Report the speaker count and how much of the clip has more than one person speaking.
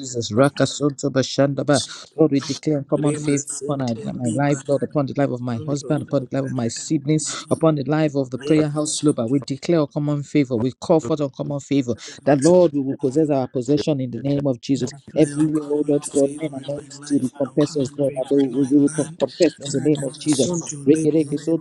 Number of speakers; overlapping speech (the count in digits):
2, about 50%